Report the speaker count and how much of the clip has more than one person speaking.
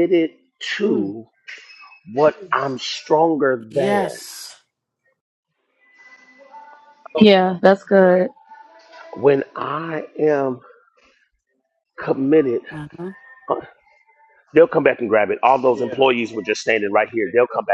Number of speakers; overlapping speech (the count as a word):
three, about 5%